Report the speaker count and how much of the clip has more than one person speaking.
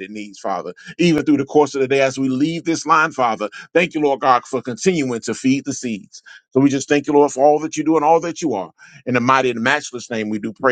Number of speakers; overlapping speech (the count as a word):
one, no overlap